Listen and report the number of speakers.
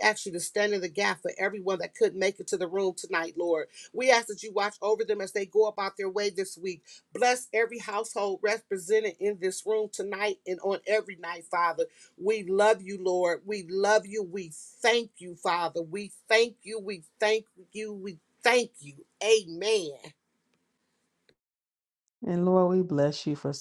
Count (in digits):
2